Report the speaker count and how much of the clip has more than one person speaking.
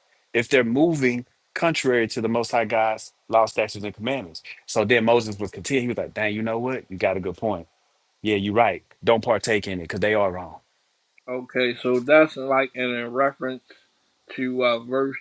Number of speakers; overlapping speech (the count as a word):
two, no overlap